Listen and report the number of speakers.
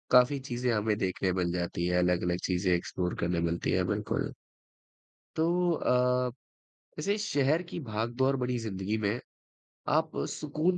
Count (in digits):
1